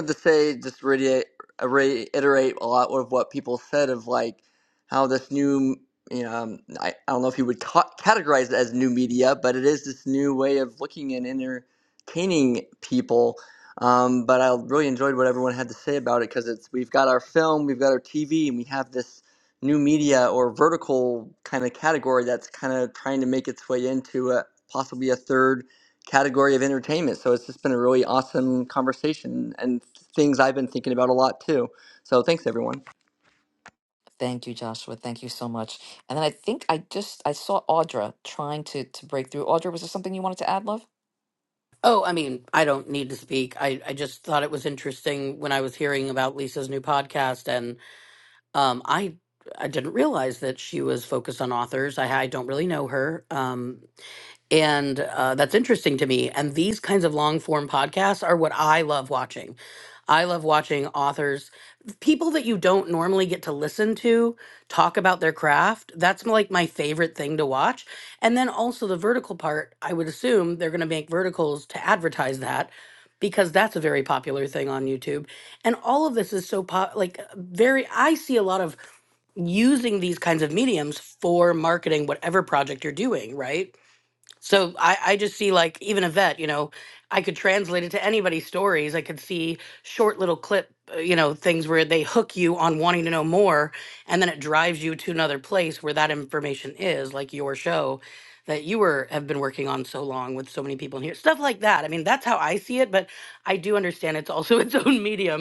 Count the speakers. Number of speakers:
3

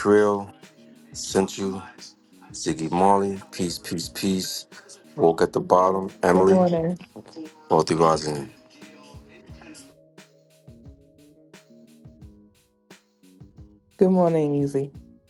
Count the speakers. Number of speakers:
2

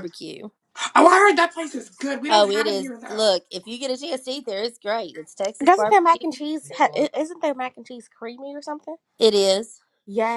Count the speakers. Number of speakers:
3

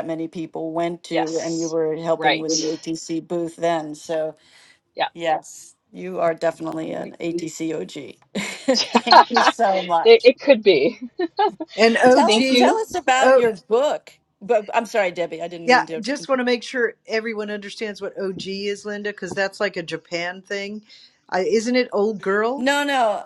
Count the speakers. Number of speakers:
3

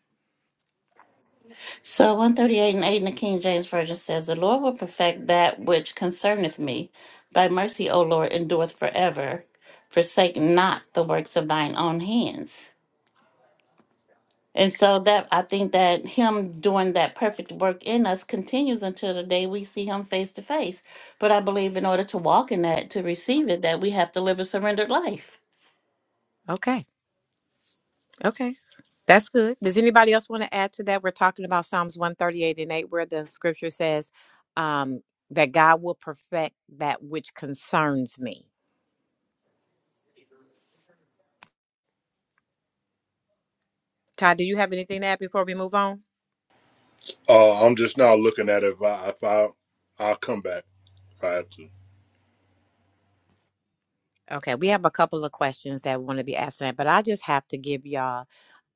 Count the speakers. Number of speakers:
3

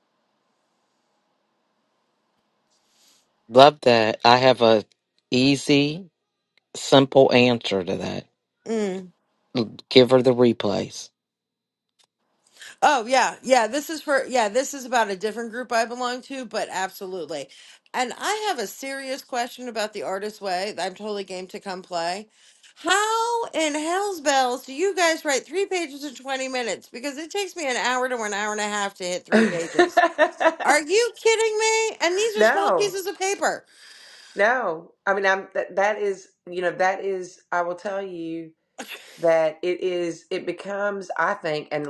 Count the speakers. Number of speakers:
3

